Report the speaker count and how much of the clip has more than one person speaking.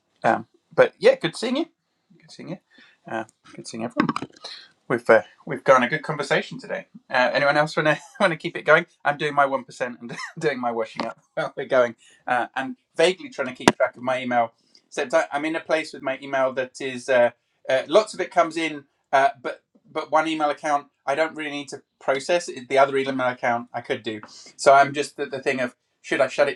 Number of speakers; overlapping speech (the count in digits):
1, no overlap